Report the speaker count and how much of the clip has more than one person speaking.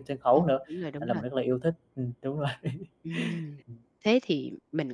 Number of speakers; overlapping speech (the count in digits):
2, about 11%